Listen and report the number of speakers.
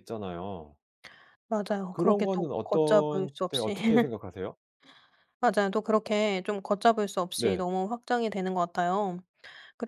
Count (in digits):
2